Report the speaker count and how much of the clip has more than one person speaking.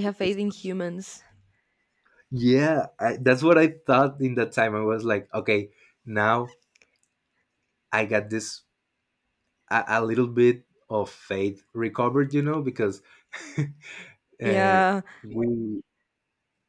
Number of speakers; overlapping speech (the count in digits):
2, about 4%